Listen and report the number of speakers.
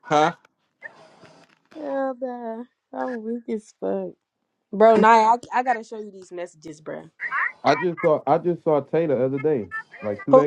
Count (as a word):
two